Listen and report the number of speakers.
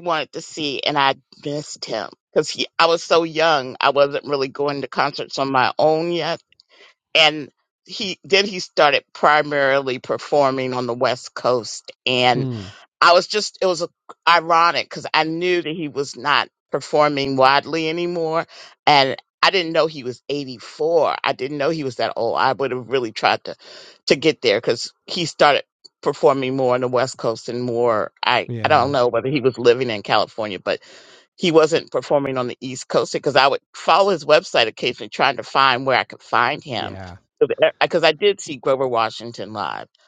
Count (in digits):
2